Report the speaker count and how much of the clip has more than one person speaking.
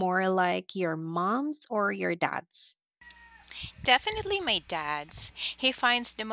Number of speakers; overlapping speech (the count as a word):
two, no overlap